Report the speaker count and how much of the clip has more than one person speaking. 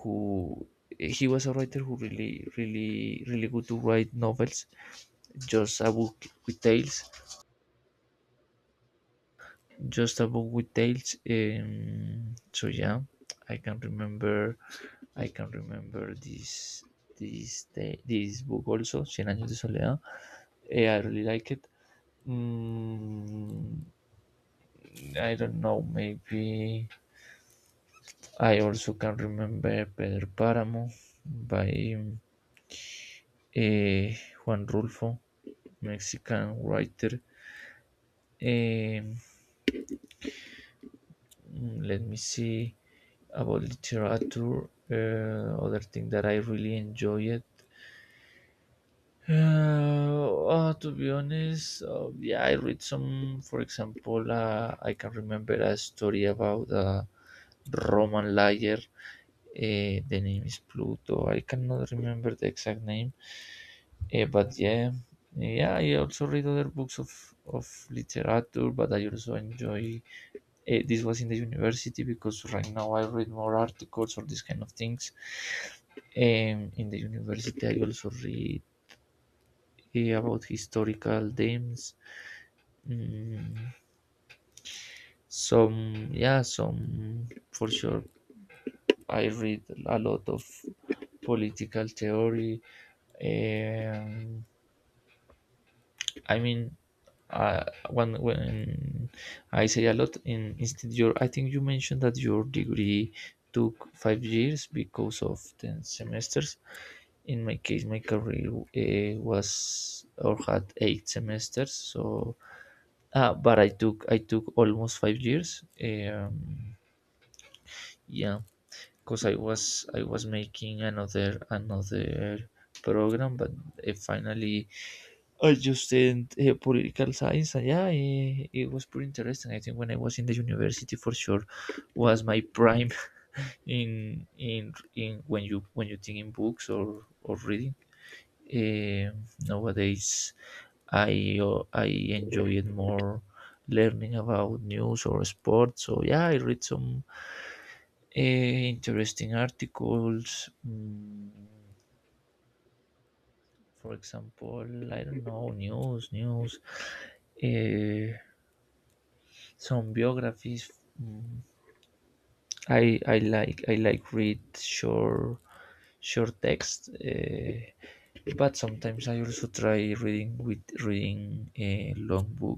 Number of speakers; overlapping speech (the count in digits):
1, no overlap